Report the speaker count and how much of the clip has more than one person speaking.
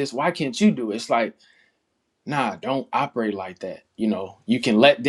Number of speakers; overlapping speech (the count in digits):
1, no overlap